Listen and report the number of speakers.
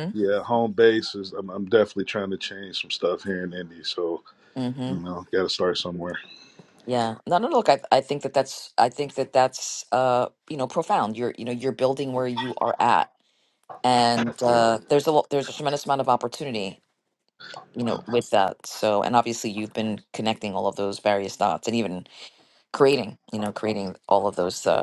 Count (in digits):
2